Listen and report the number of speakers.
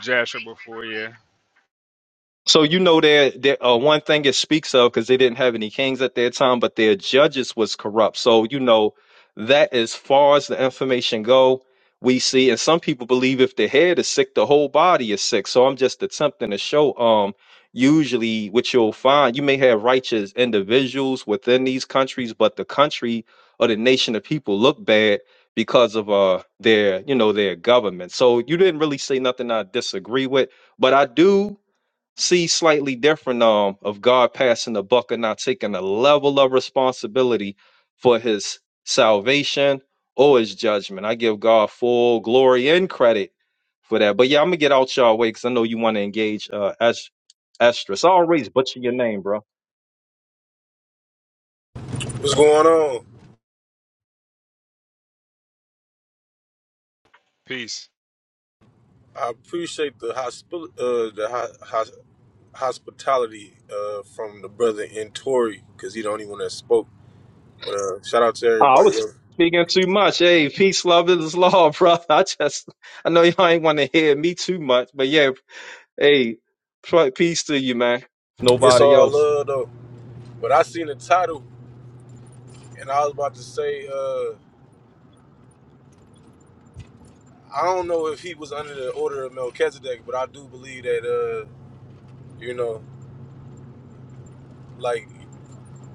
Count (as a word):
three